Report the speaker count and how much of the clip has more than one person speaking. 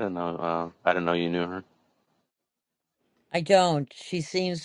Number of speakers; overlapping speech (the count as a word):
two, no overlap